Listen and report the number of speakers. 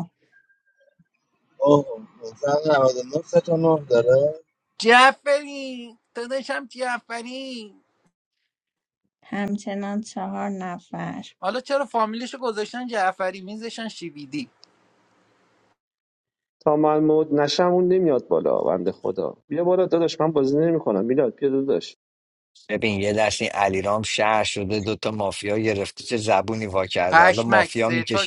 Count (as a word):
five